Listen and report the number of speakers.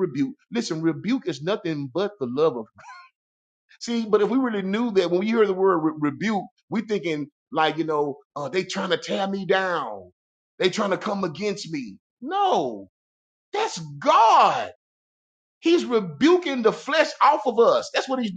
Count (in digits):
1